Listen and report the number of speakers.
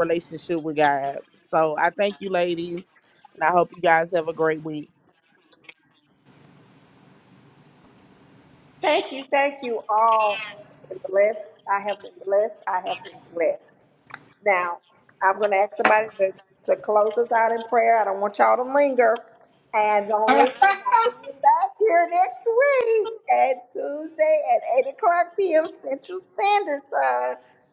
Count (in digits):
2